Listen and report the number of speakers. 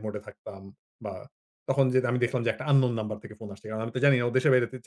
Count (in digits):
1